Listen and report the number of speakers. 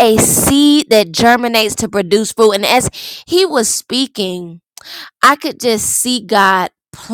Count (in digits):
1